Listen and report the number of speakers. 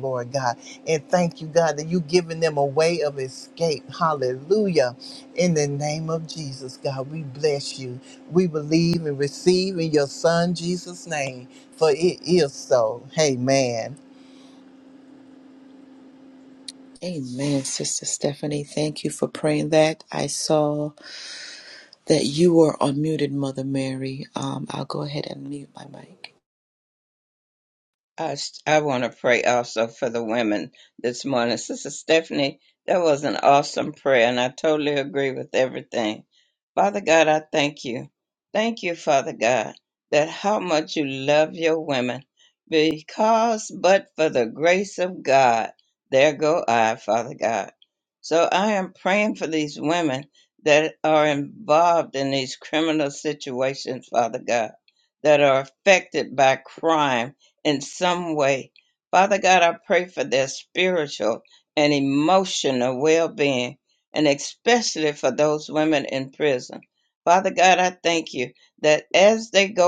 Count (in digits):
3